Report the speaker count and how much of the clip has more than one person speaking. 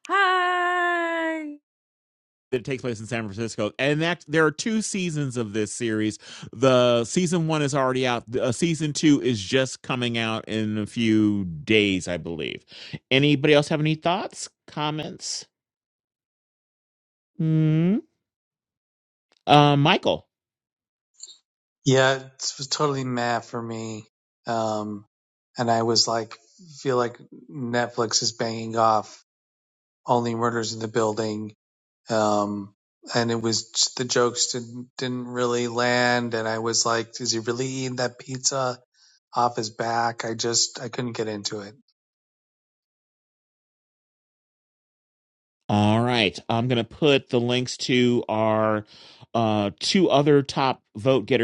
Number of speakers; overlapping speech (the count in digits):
3, no overlap